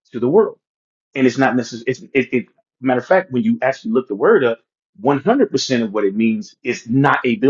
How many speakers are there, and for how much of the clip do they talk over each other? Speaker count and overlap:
one, no overlap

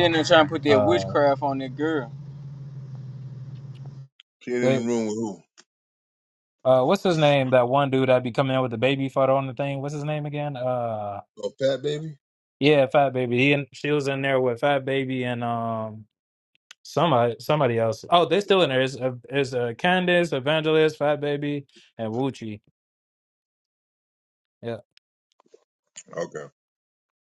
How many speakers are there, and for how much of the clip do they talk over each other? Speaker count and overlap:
three, about 3%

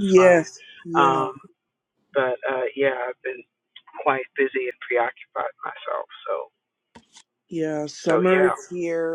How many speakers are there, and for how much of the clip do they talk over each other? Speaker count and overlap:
two, about 15%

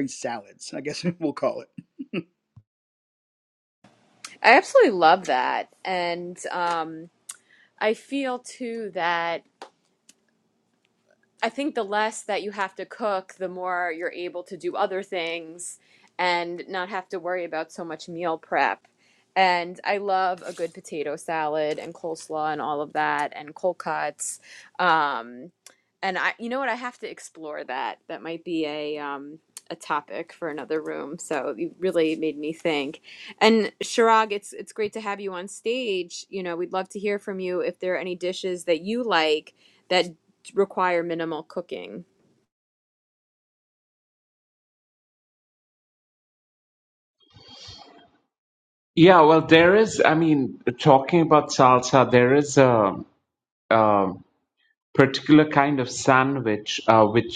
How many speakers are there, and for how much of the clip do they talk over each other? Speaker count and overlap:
three, no overlap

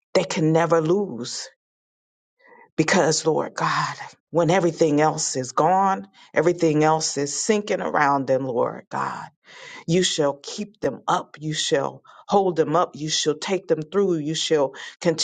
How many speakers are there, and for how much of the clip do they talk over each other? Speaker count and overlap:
one, no overlap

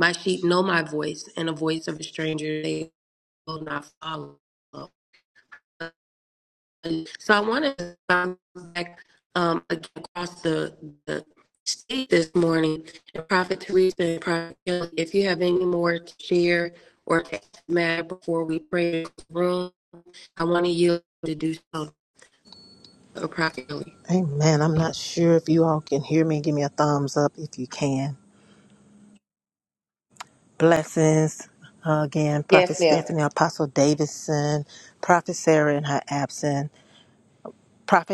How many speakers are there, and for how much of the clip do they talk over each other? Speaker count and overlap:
two, about 2%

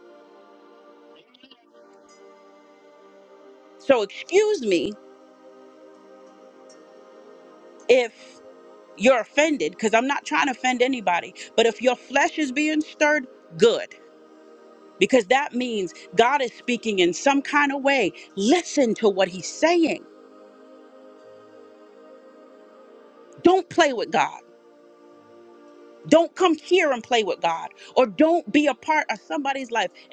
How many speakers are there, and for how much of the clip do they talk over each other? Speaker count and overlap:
one, no overlap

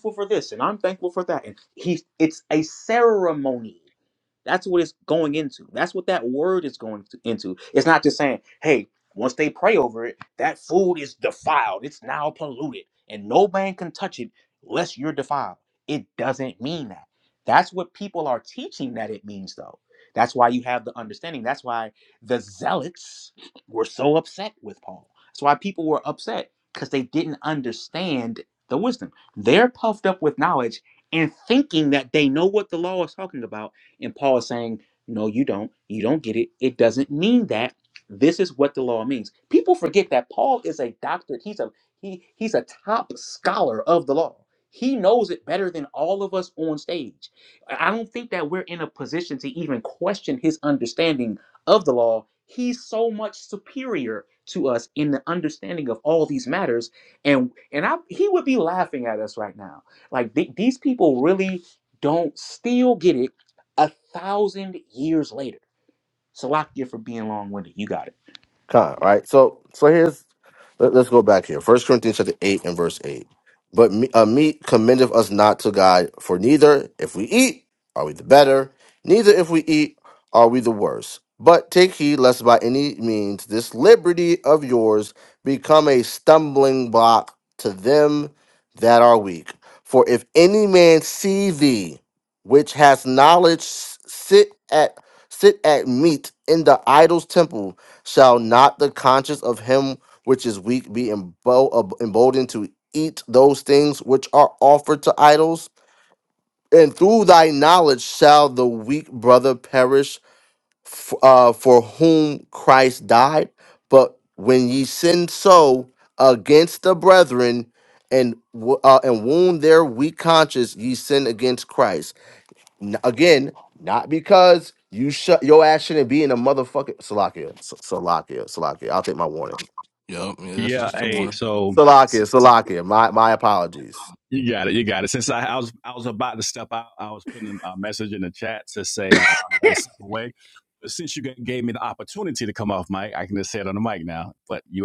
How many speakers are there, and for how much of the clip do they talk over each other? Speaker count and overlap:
four, about 1%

